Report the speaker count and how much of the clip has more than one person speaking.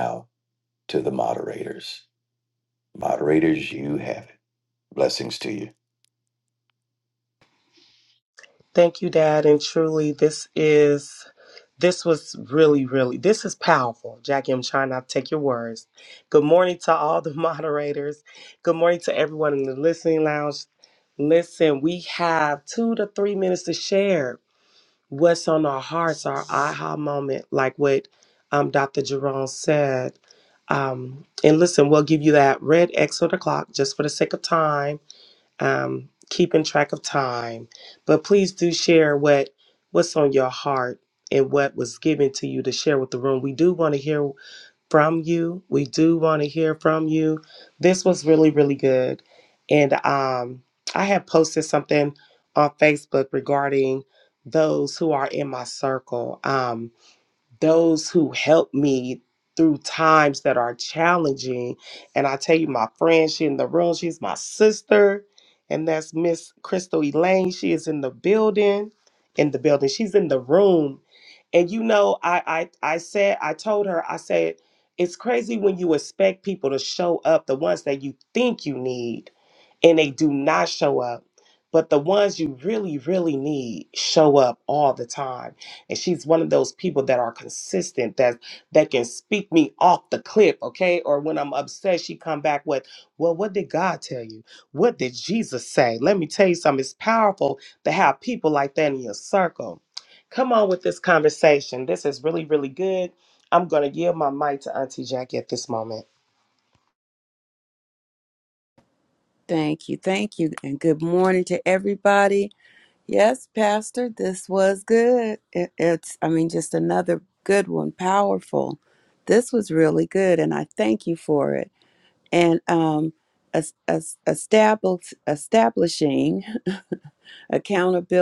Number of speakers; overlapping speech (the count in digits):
3, no overlap